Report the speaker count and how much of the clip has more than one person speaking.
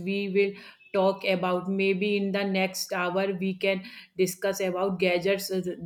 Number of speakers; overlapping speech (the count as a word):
one, no overlap